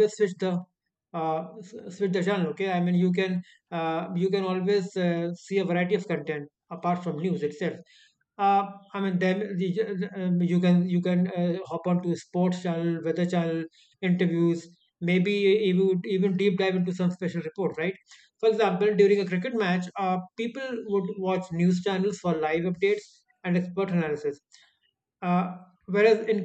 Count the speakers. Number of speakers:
1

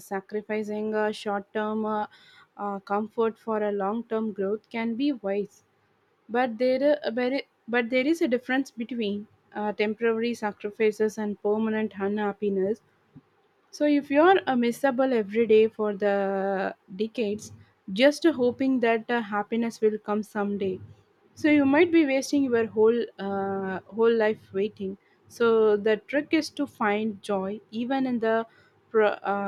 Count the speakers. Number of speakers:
1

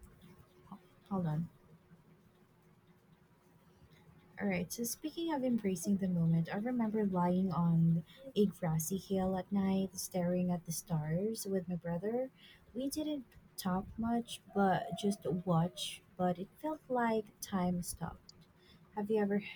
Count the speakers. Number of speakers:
1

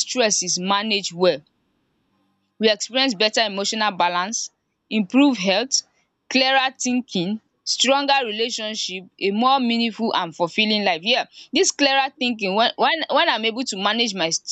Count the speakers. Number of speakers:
1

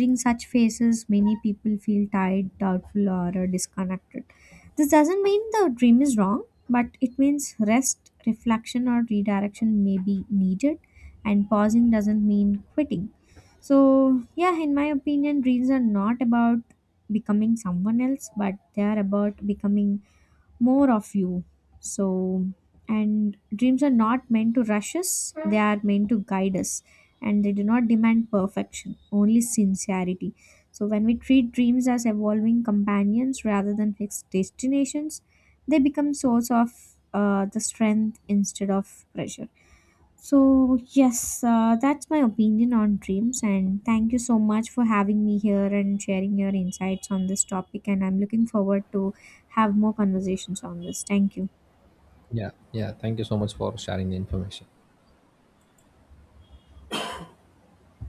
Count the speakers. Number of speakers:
2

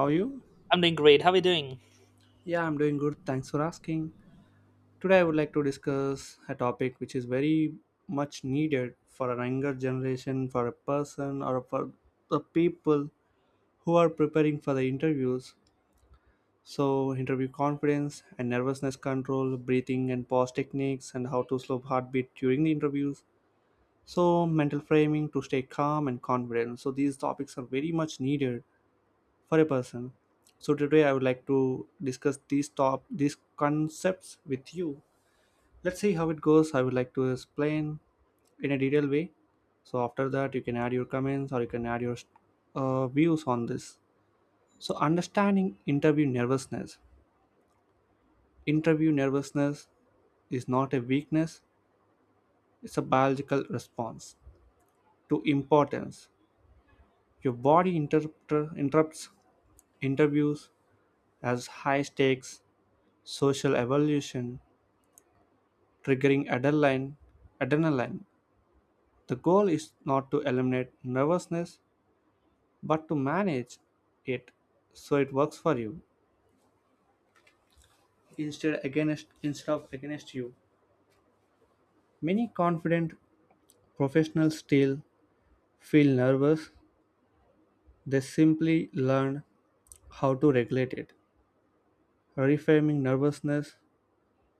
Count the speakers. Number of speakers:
2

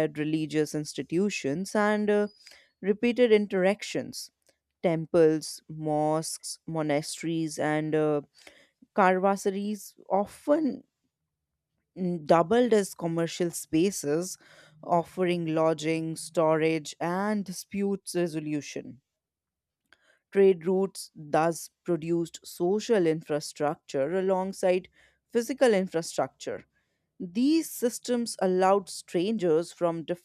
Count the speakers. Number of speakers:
1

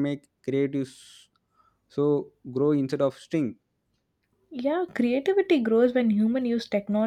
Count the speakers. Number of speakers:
2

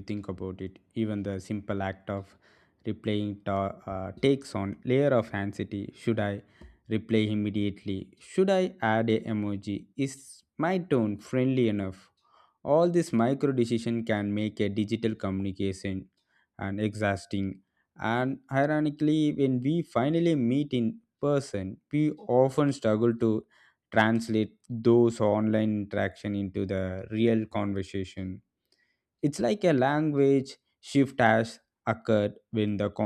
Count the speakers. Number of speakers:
1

